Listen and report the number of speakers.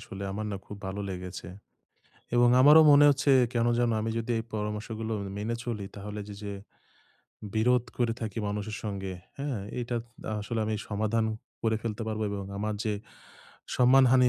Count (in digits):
1